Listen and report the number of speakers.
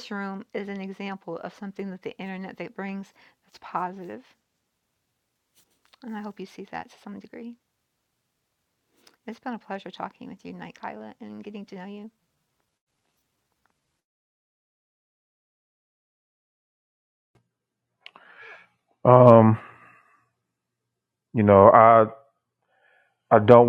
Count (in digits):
2